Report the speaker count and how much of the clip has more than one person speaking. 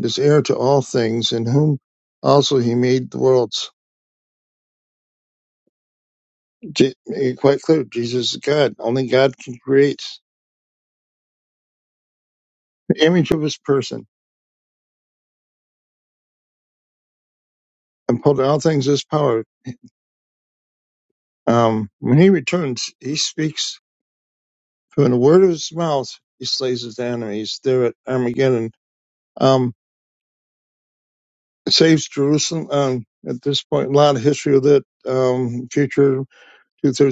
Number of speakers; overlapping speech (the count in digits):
1, no overlap